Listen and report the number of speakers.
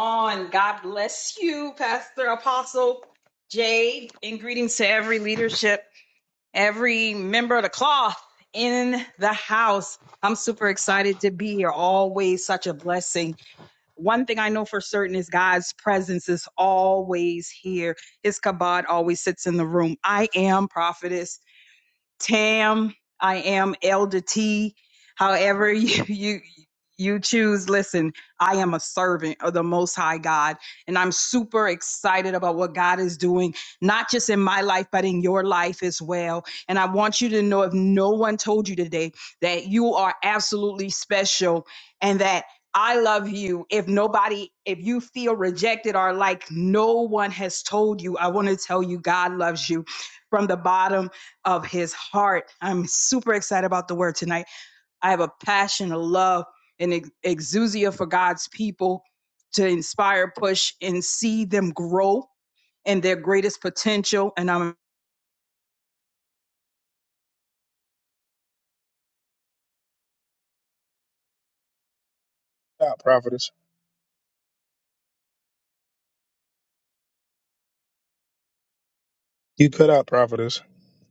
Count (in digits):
2